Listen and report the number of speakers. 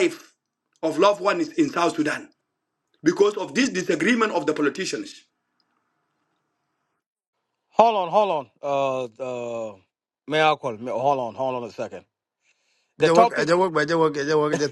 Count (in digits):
3